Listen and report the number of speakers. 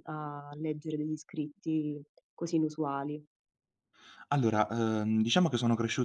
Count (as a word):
two